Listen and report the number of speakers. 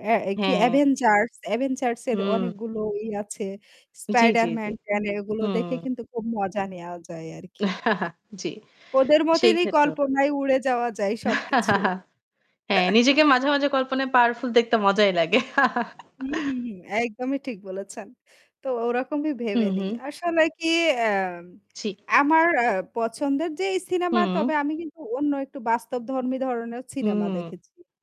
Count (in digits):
2